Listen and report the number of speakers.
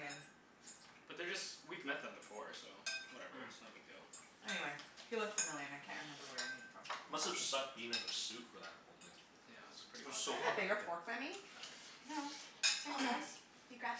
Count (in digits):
4